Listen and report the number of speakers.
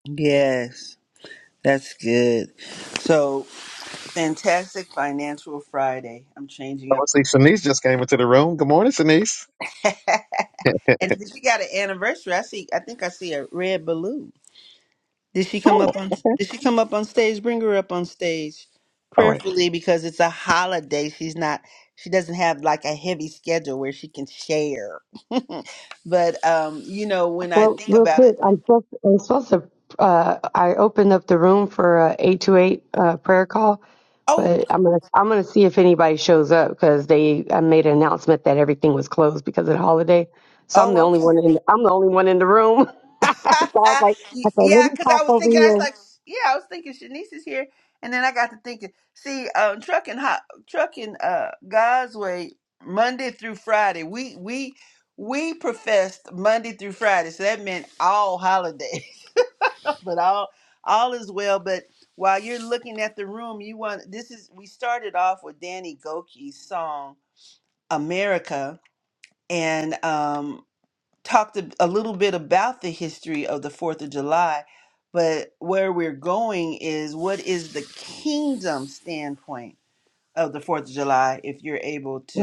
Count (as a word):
three